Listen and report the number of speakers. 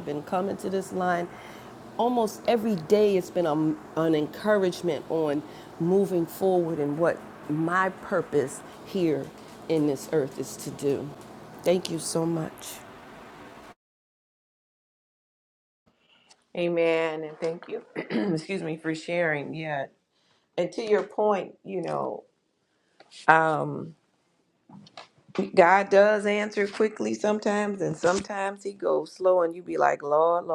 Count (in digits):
2